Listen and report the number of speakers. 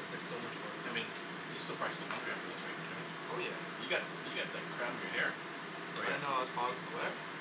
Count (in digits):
2